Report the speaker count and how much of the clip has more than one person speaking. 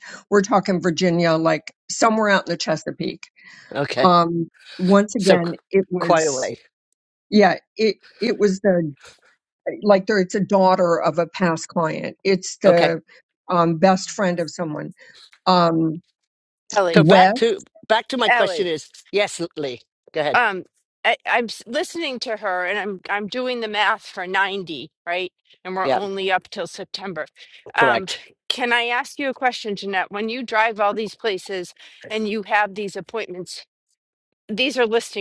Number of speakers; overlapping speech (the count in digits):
3, about 7%